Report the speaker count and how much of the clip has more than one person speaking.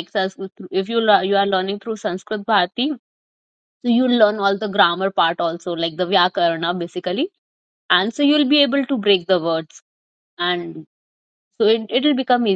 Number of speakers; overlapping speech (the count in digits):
1, no overlap